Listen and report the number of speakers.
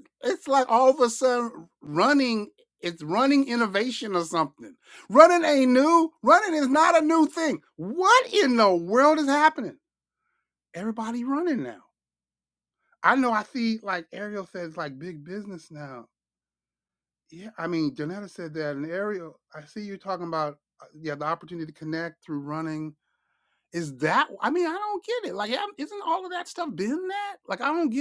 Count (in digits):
1